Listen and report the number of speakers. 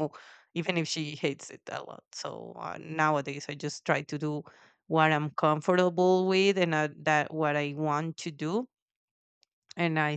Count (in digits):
1